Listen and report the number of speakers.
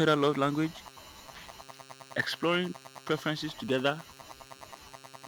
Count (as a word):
one